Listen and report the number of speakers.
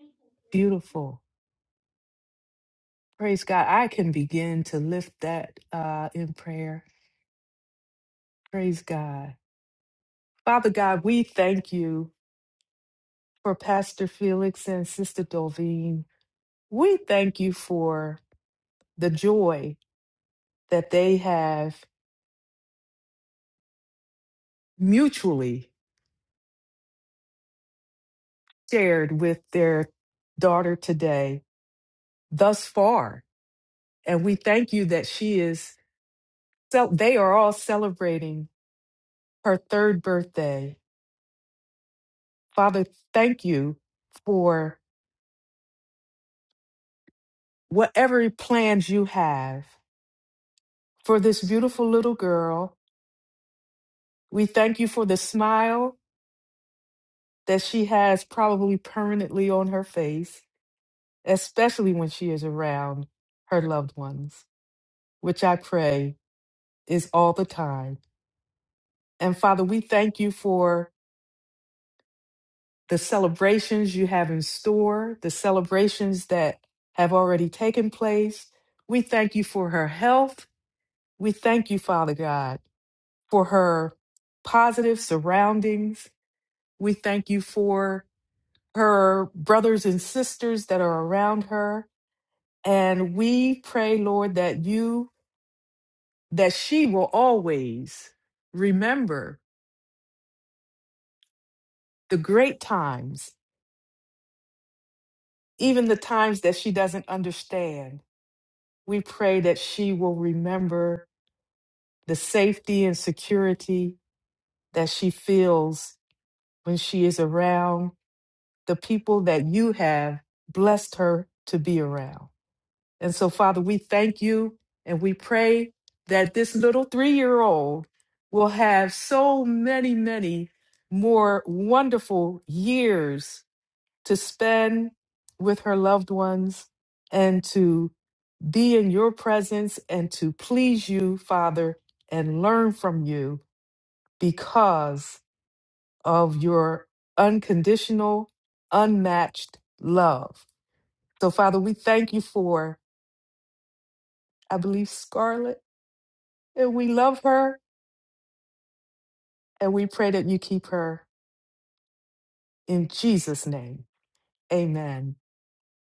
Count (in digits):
1